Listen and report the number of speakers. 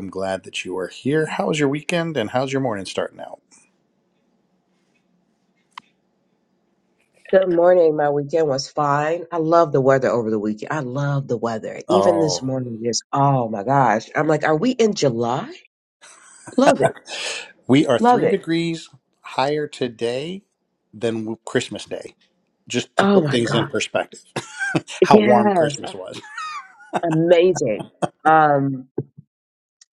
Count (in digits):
2